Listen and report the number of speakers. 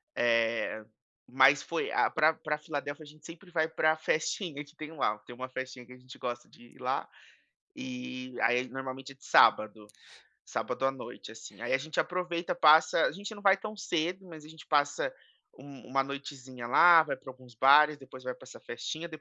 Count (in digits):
1